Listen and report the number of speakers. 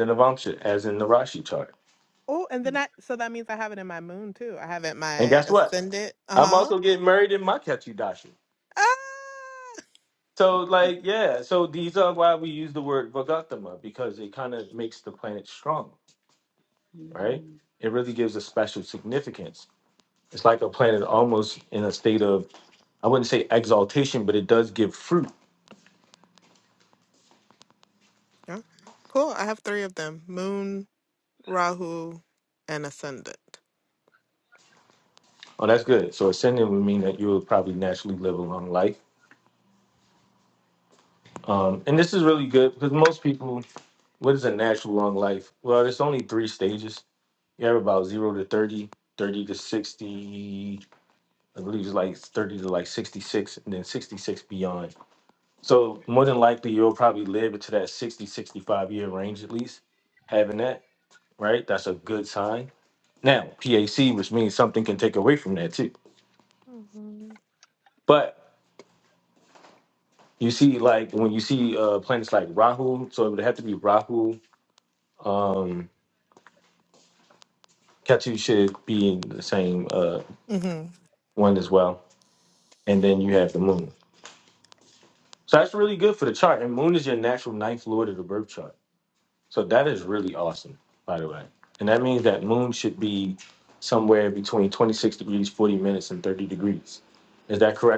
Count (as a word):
two